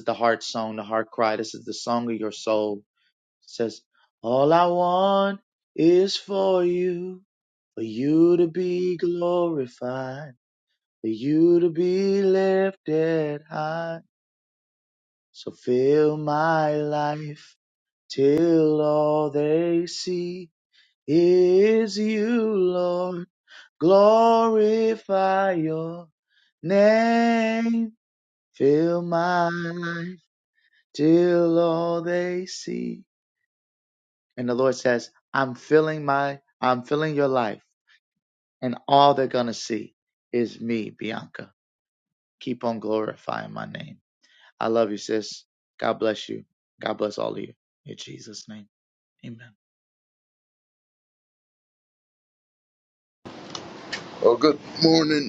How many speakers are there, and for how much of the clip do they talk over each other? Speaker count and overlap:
2, no overlap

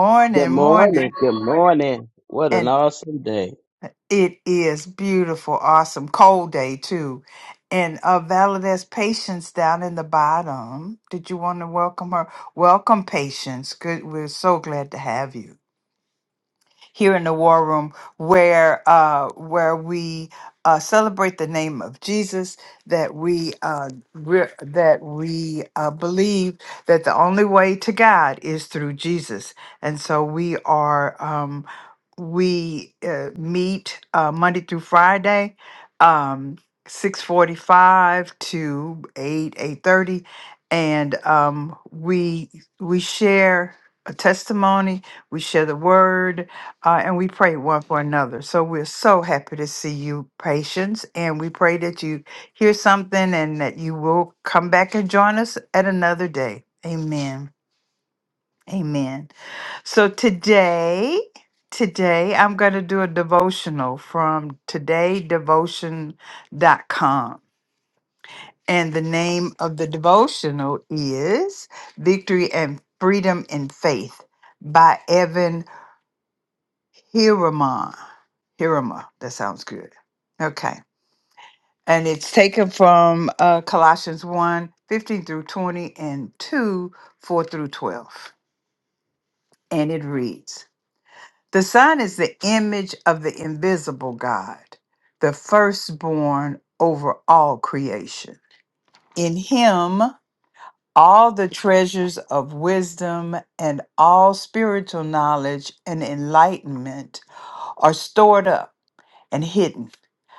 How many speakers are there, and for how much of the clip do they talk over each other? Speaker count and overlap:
2, about 1%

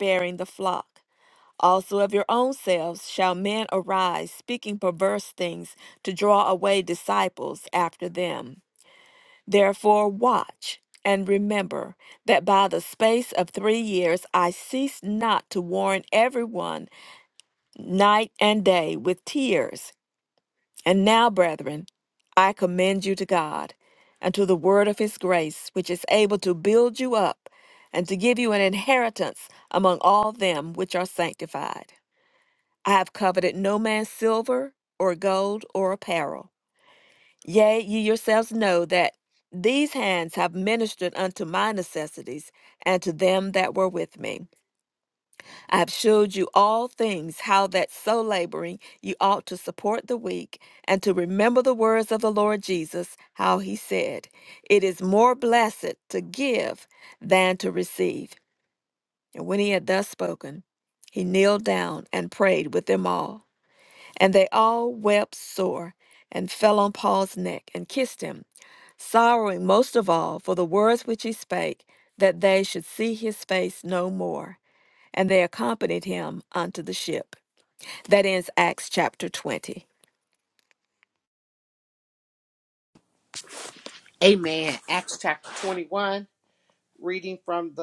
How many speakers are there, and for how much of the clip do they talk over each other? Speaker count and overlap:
2, no overlap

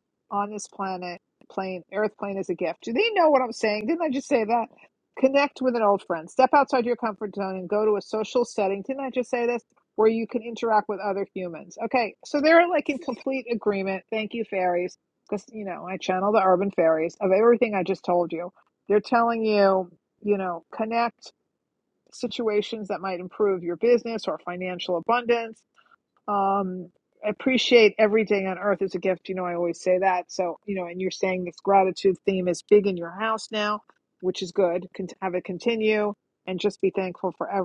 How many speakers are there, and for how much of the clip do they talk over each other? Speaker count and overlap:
1, no overlap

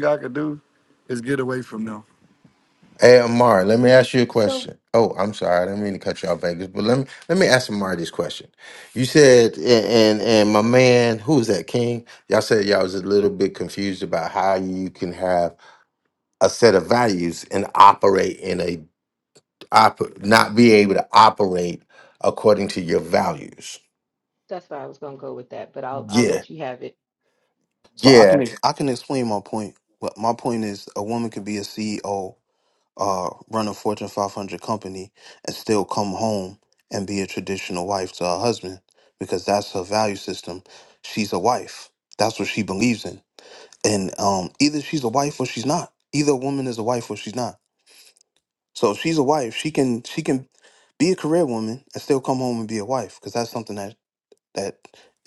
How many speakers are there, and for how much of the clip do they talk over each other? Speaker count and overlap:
4, about 2%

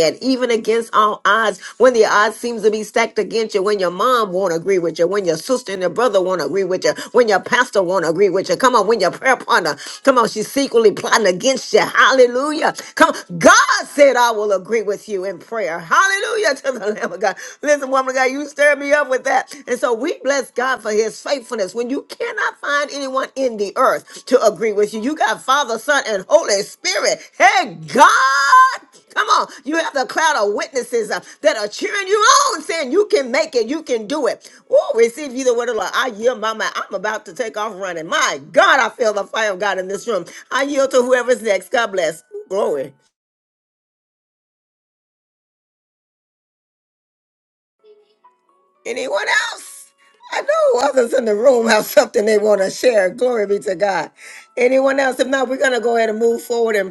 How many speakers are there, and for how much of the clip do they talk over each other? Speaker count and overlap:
1, no overlap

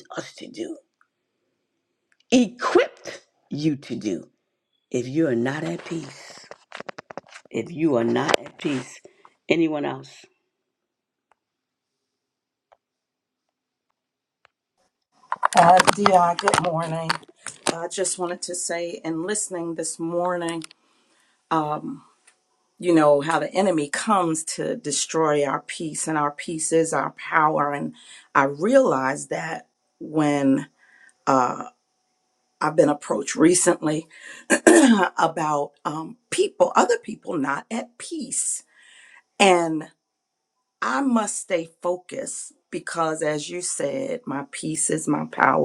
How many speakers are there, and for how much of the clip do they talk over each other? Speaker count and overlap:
2, no overlap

